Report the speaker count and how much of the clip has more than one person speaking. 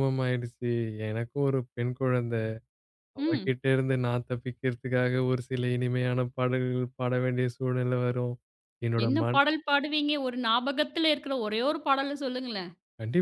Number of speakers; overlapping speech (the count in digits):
2, about 6%